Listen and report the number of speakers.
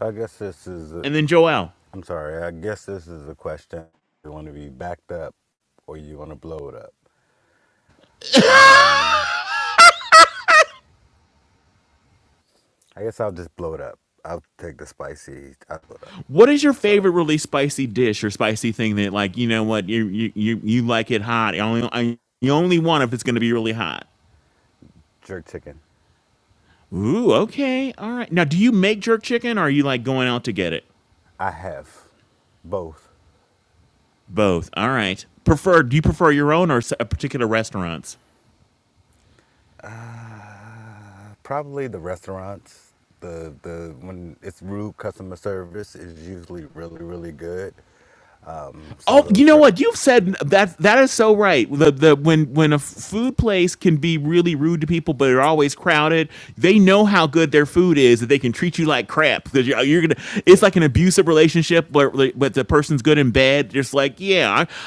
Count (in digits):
2